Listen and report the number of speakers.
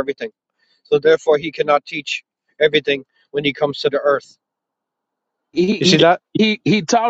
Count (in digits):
2